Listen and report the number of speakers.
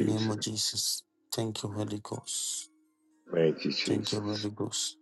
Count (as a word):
two